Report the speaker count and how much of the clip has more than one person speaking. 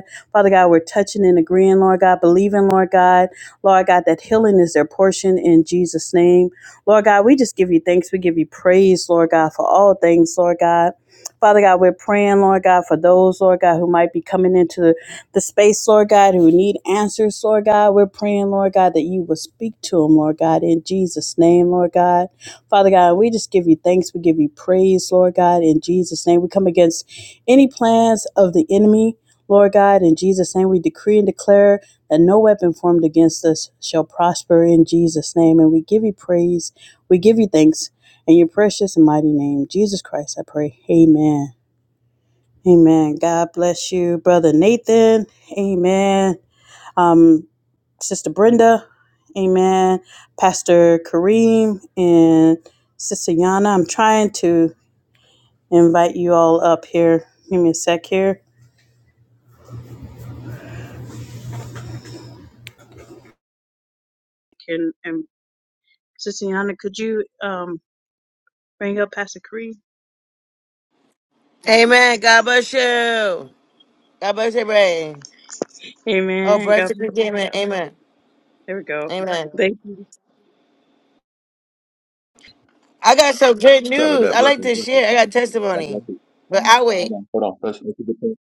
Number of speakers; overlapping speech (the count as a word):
three, about 2%